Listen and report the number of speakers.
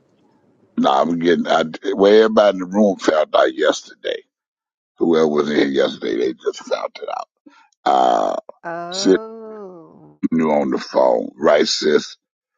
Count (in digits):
2